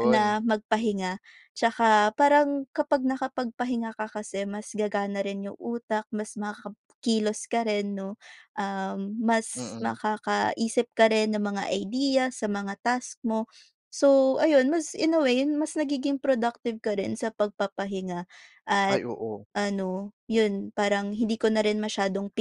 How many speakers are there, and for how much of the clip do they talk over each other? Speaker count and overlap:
2, about 4%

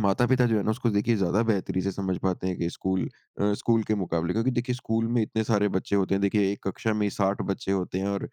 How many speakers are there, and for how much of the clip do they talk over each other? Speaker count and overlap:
1, no overlap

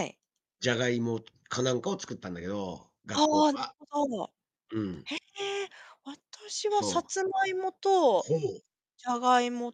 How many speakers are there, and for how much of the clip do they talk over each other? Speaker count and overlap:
2, about 8%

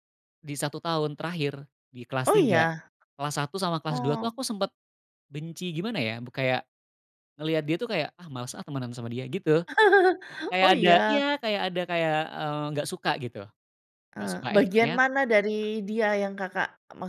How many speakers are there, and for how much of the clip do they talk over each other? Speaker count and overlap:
2, about 13%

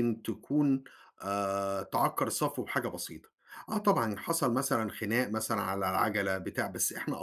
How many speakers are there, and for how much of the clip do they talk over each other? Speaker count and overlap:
1, no overlap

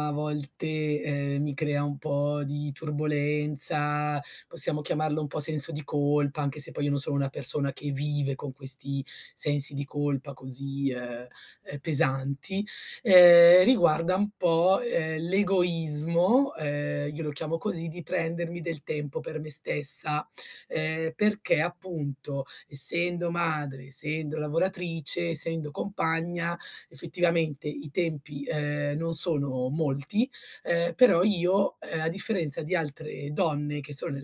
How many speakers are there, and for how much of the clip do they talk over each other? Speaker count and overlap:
1, no overlap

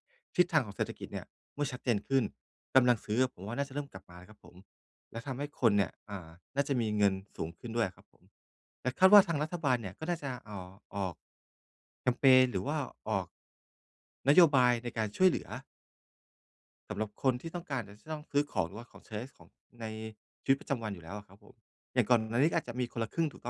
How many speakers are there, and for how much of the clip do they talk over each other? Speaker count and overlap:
1, no overlap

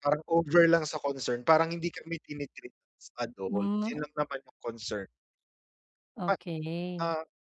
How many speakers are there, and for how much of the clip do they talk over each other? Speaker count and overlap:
2, about 8%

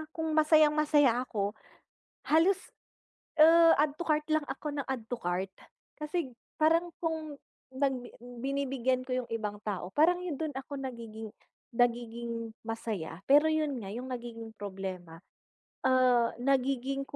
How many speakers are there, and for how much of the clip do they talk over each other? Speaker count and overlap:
1, no overlap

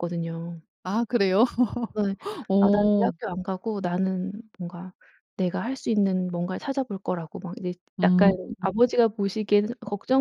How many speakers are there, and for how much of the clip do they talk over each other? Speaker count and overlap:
2, about 8%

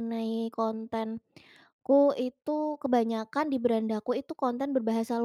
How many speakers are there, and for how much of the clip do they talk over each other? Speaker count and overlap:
1, no overlap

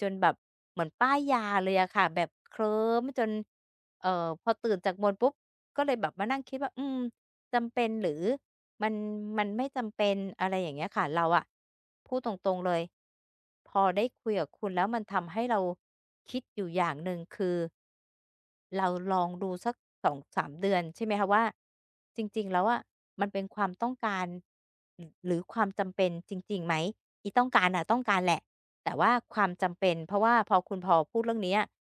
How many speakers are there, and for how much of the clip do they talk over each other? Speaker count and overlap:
1, no overlap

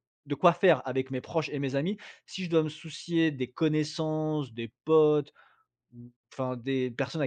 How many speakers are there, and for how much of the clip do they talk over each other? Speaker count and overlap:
1, no overlap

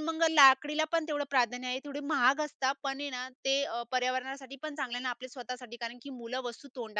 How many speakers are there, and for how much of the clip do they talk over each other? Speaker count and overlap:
1, no overlap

